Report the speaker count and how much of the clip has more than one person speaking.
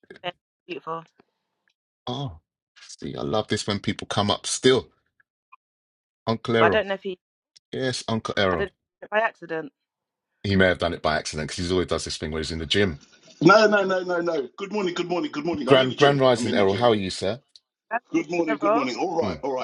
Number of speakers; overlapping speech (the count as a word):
three, about 11%